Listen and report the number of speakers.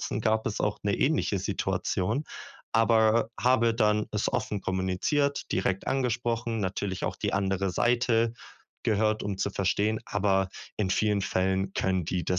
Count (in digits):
1